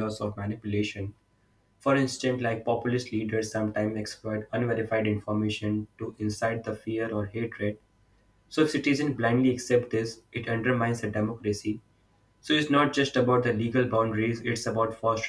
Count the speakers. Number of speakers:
1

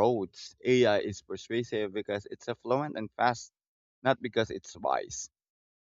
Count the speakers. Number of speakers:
1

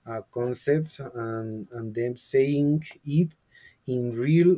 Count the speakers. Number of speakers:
1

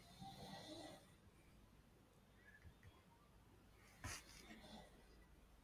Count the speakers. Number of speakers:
0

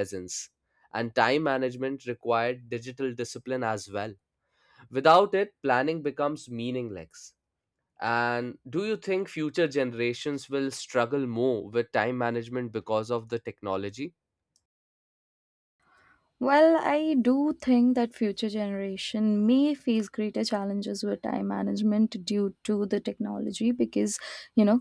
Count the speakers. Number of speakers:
2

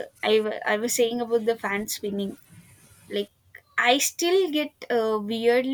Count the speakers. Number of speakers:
1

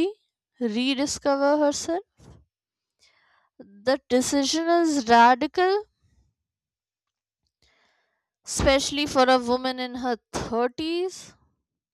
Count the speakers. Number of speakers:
1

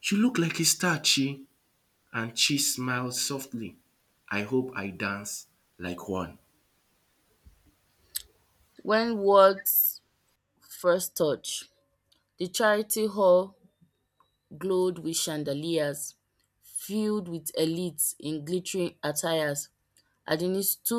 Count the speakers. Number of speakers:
2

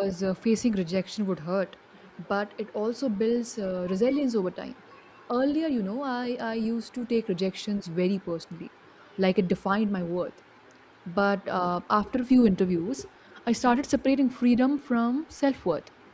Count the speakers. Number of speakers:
1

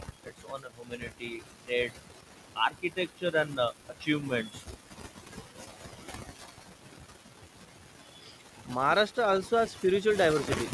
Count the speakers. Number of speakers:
2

